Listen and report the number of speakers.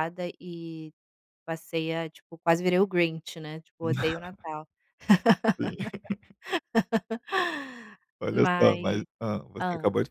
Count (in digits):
2